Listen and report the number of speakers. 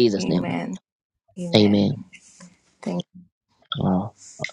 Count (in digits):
2